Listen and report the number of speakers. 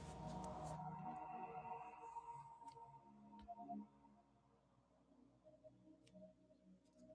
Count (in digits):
0